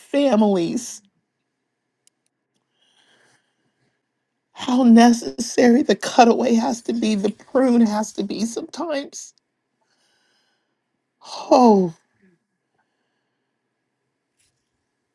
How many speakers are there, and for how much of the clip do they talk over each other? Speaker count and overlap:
one, no overlap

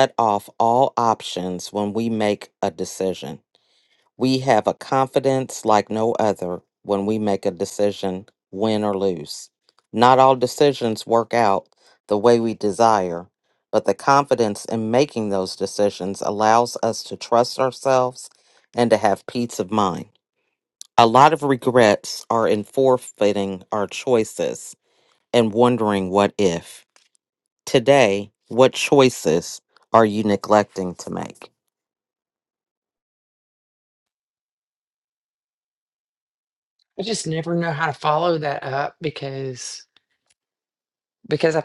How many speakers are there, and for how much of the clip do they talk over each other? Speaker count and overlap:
two, no overlap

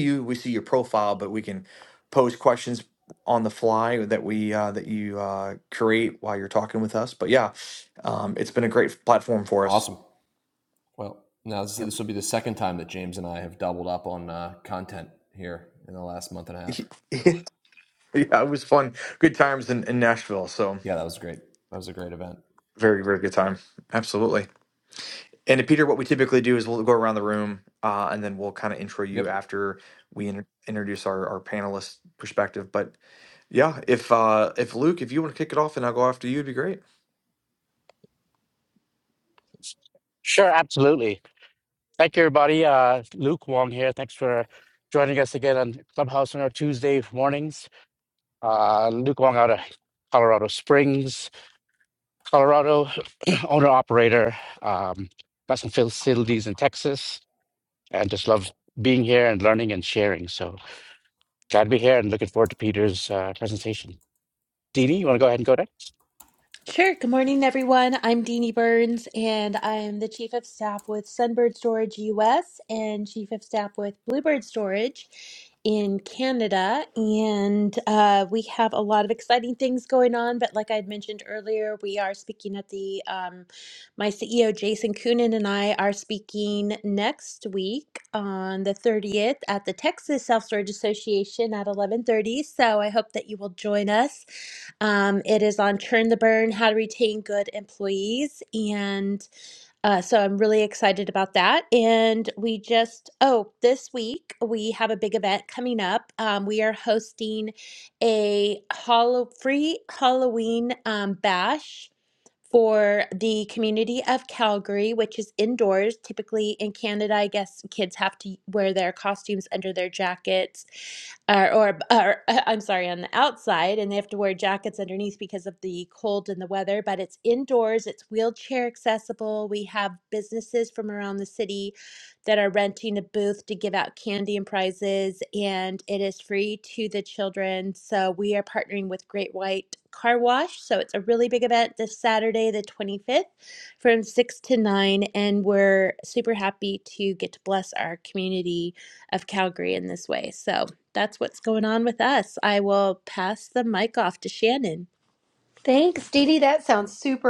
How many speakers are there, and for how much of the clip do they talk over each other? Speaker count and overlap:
five, under 1%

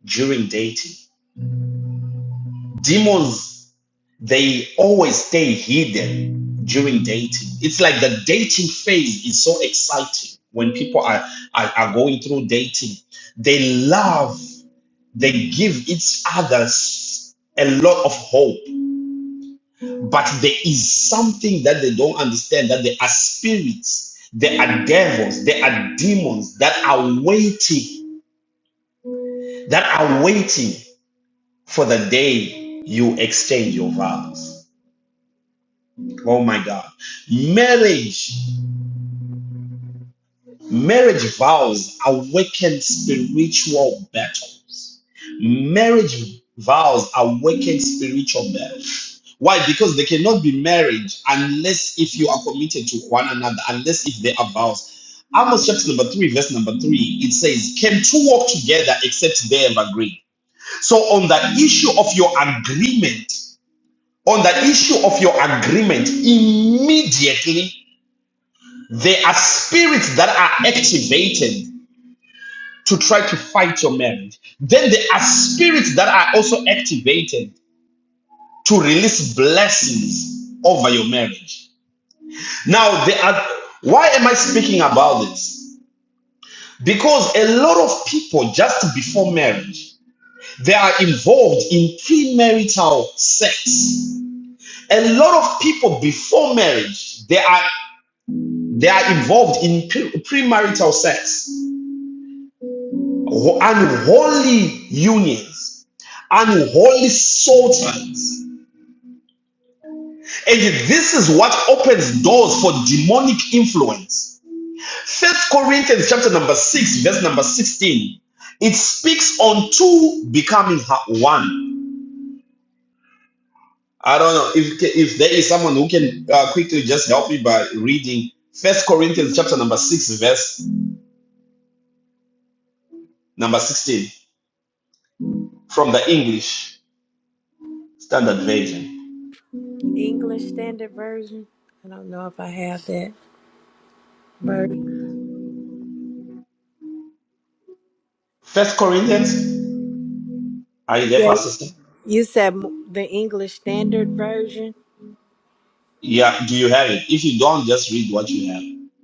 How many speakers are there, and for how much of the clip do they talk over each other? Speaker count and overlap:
two, under 1%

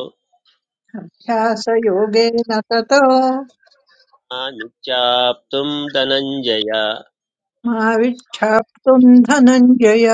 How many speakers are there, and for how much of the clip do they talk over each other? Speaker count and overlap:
two, no overlap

